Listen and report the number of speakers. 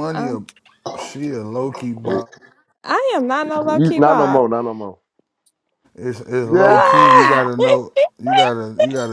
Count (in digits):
3